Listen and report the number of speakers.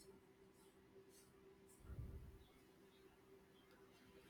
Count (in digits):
0